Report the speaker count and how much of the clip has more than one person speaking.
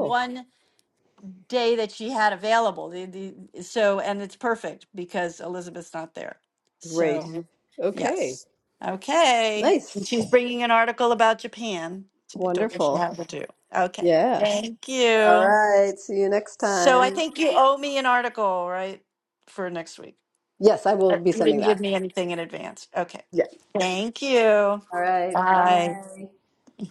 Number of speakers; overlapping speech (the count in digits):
2, about 14%